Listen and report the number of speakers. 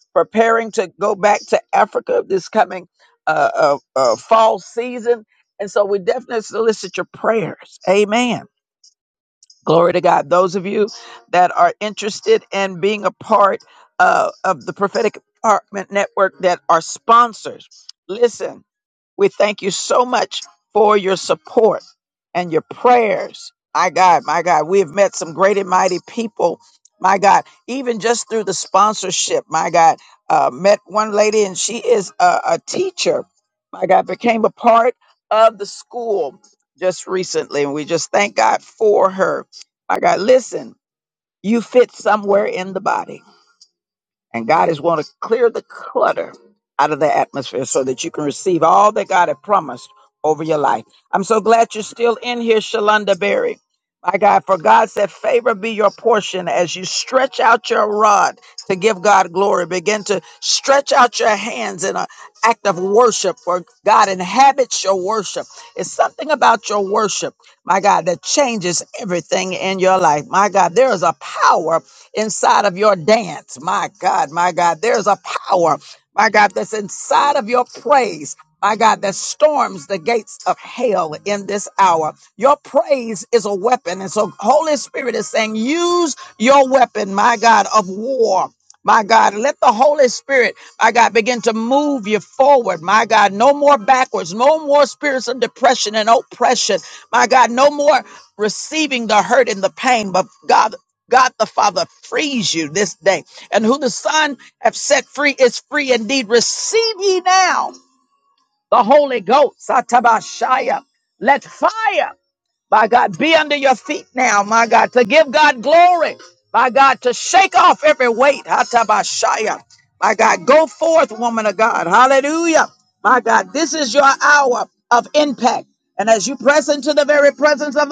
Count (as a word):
one